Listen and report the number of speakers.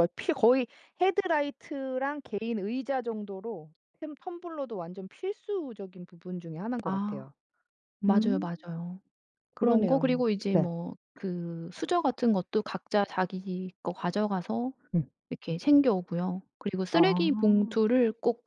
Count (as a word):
two